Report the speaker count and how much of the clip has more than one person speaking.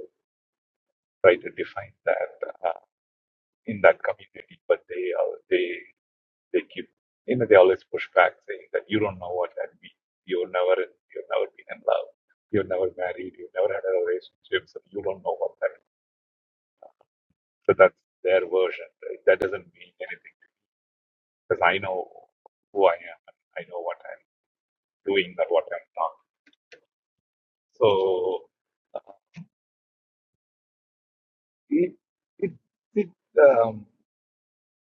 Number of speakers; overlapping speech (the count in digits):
1, no overlap